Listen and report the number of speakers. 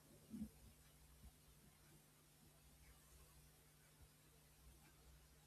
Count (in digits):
0